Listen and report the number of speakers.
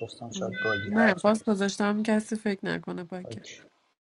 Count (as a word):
two